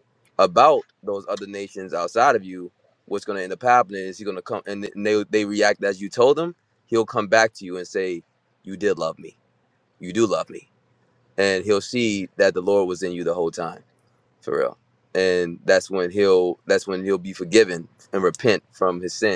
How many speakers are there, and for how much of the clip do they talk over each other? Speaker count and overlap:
1, no overlap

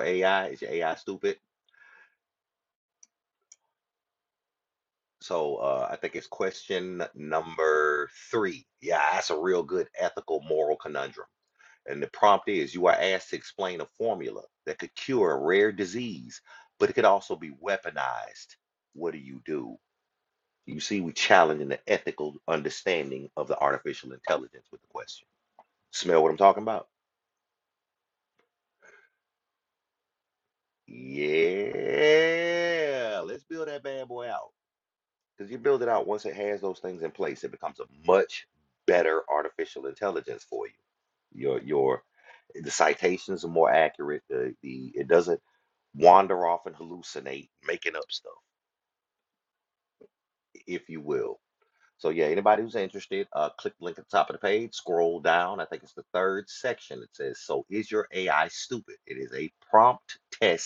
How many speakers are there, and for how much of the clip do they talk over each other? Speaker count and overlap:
1, no overlap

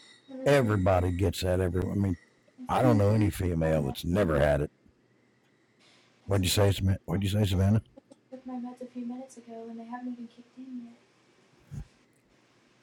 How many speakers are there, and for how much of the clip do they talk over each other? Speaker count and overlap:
2, about 12%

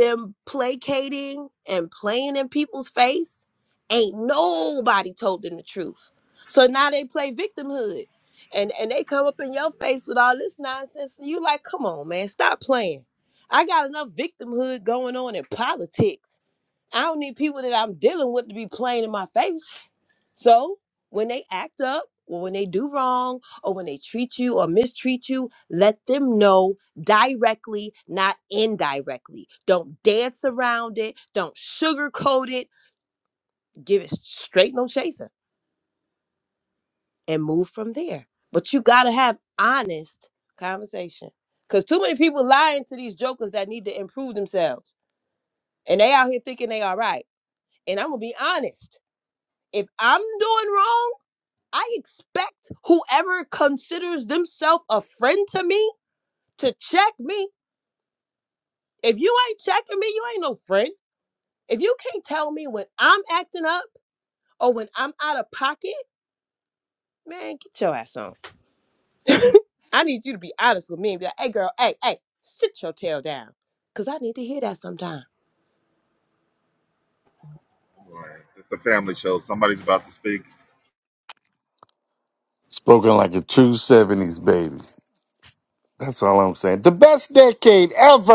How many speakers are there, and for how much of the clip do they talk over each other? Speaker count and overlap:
3, no overlap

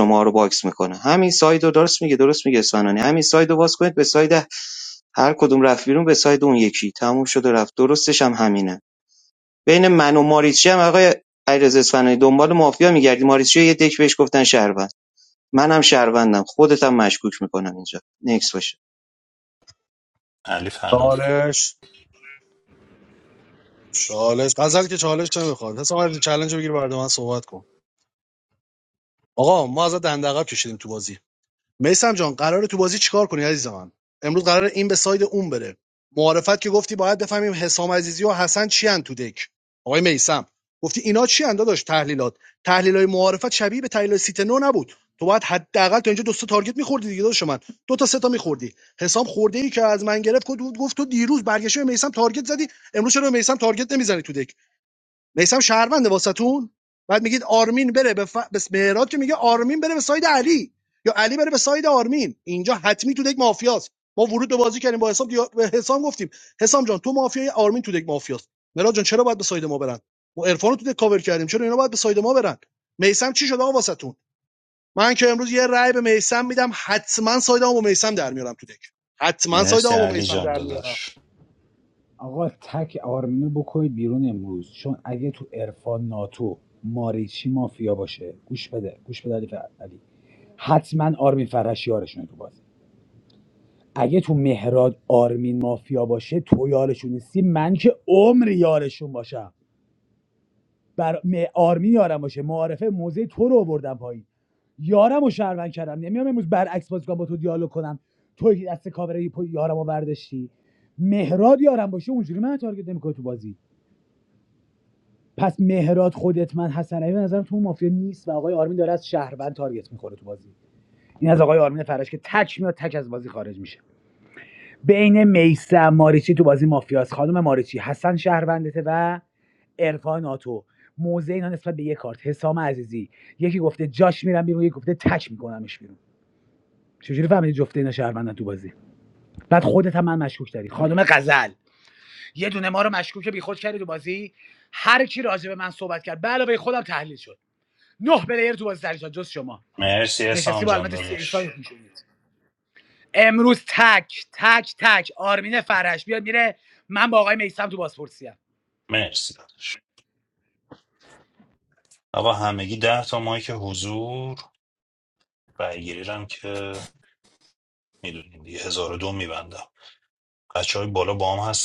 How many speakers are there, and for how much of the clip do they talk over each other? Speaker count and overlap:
4, about 2%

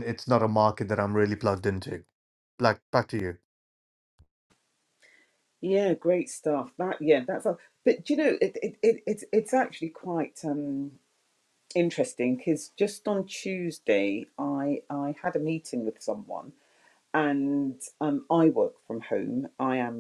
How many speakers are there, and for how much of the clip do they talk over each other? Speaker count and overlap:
2, no overlap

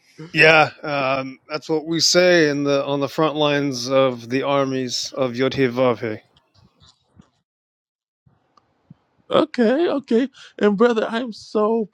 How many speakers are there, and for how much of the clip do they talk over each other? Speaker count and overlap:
2, no overlap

